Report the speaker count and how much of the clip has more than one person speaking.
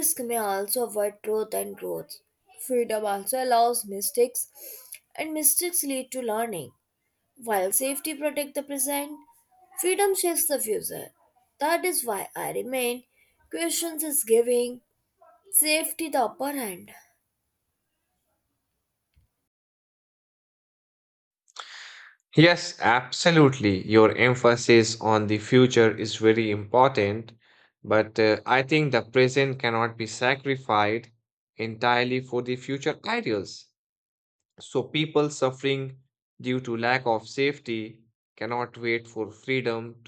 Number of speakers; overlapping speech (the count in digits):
2, no overlap